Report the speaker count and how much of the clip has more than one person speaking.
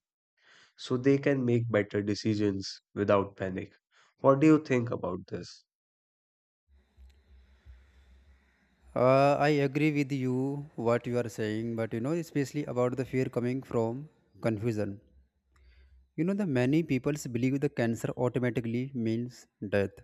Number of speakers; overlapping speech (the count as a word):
two, no overlap